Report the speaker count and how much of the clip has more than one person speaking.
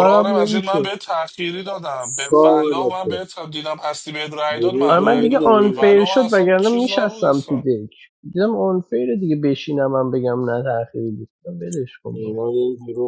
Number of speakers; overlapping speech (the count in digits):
3, about 39%